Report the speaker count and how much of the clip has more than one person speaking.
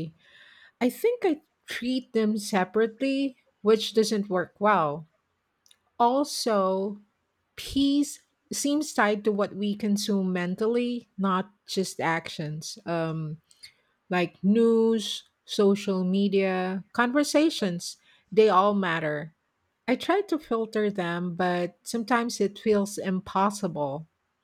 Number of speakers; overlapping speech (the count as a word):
one, no overlap